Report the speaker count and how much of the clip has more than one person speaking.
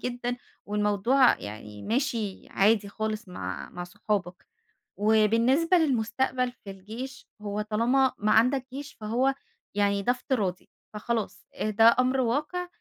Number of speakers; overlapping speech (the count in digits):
1, no overlap